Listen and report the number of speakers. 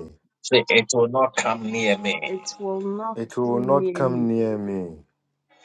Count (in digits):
3